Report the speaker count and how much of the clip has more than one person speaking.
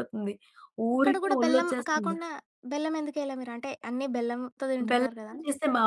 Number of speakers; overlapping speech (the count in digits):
2, about 28%